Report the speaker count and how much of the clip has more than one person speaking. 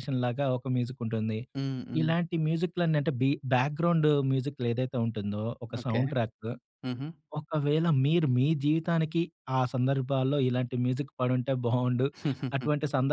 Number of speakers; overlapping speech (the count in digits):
2, about 3%